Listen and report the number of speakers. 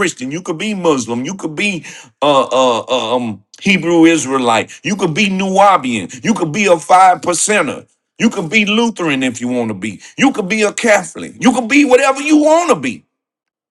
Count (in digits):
1